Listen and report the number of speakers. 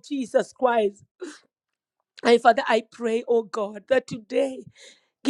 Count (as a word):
one